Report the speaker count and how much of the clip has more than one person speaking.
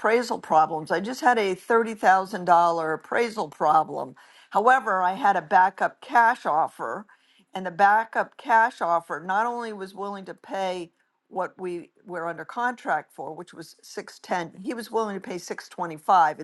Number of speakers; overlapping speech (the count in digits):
1, no overlap